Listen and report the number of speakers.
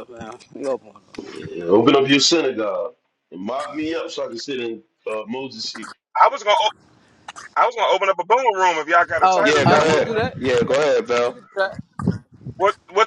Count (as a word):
four